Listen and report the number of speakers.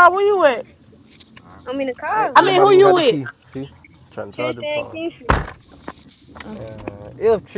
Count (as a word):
three